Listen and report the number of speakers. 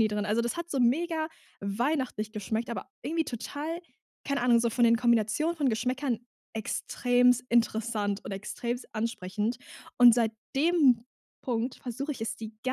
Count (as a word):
one